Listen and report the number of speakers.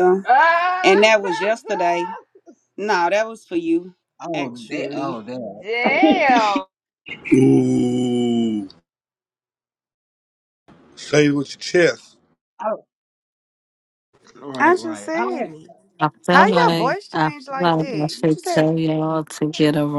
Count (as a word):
five